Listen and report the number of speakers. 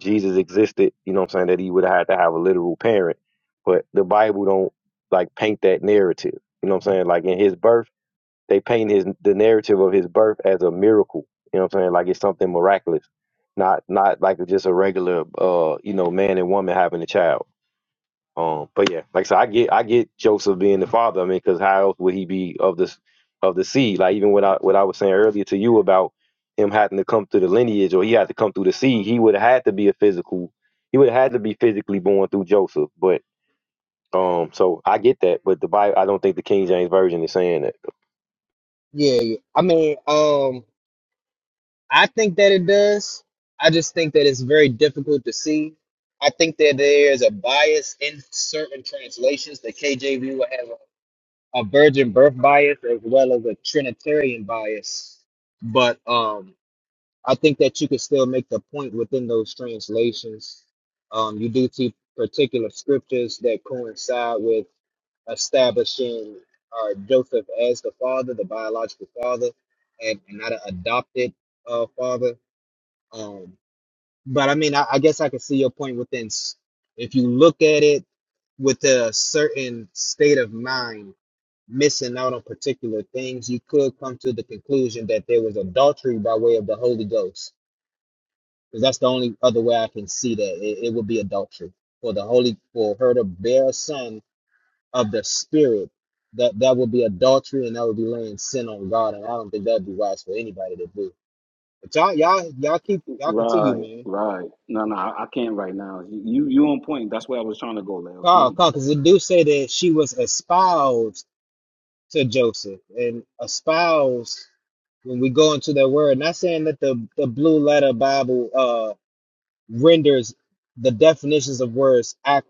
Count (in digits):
3